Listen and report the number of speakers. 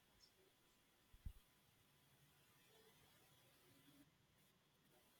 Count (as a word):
zero